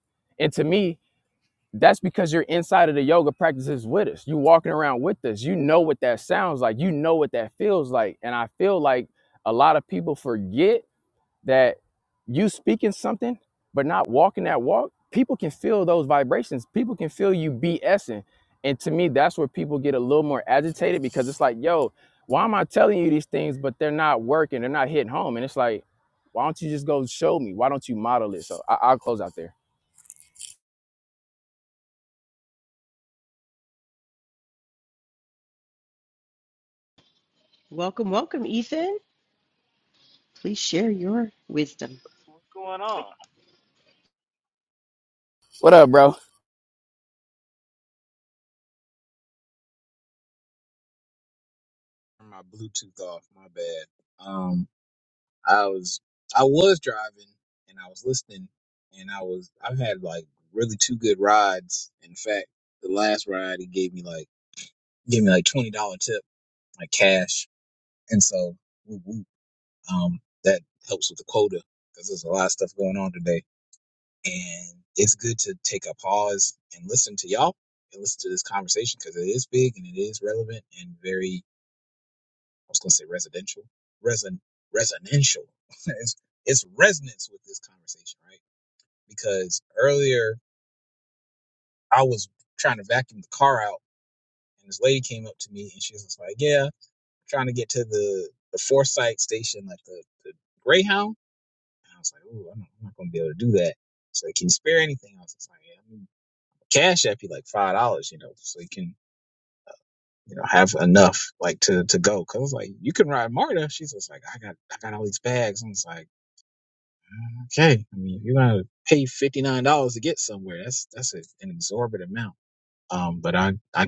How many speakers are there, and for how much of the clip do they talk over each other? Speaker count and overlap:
3, no overlap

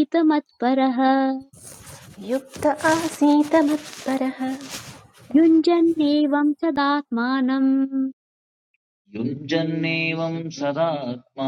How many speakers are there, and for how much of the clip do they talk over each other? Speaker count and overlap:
3, no overlap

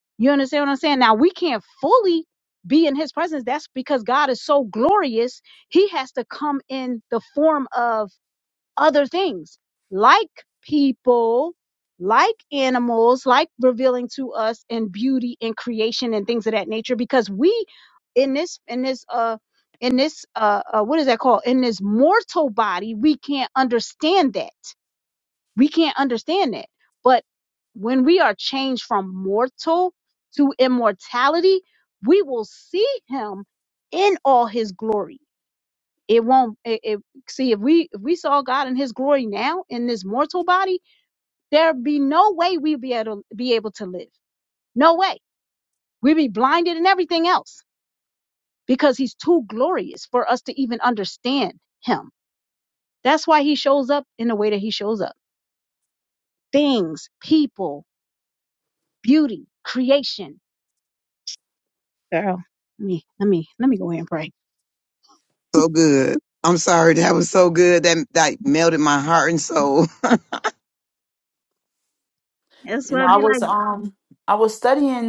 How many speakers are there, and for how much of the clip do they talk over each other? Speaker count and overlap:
3, about 1%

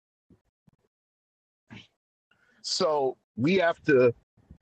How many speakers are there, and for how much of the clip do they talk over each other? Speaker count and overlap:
1, no overlap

